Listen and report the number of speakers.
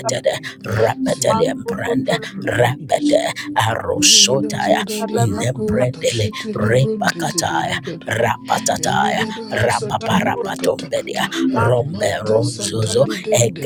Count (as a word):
two